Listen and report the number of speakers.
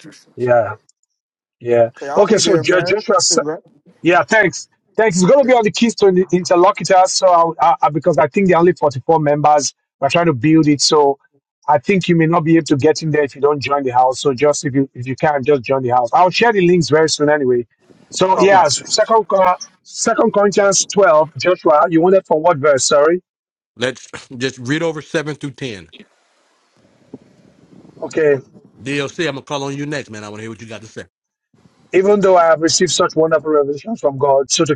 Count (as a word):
three